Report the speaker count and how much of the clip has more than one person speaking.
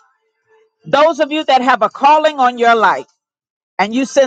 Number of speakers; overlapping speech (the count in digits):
1, no overlap